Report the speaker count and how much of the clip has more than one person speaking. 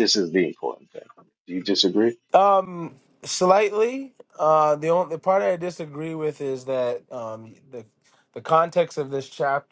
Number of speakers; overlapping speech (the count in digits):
2, no overlap